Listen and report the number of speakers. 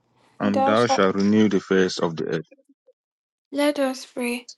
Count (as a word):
two